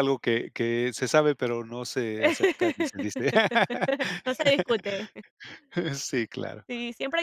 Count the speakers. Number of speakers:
2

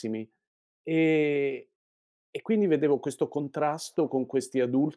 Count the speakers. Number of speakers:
1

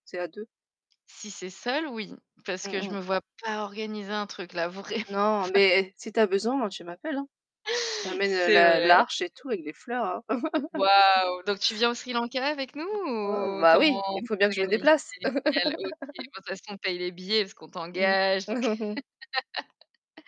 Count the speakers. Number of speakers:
2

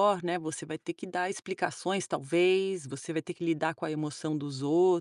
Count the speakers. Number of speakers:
1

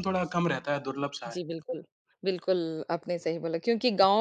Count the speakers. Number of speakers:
2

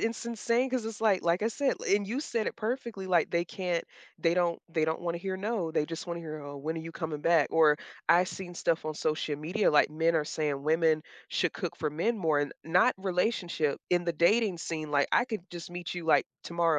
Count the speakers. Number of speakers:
1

